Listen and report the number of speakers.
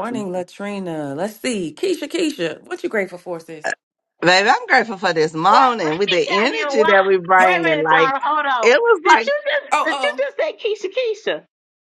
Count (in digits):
3